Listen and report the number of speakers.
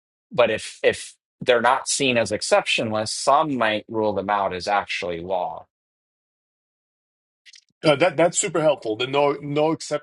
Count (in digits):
2